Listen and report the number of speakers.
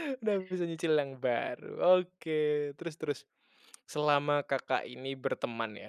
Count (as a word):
one